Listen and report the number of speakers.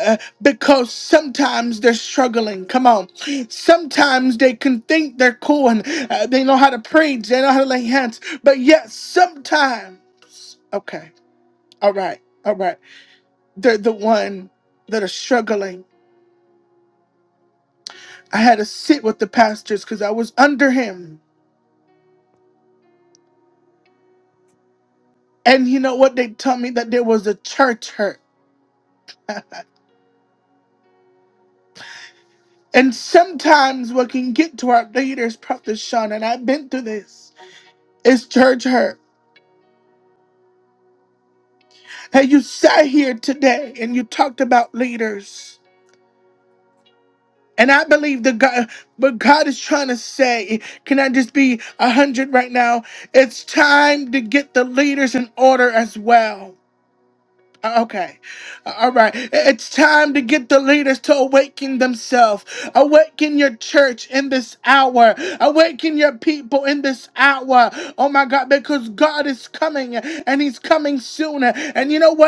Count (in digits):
1